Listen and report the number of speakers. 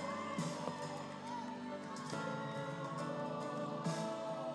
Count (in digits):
0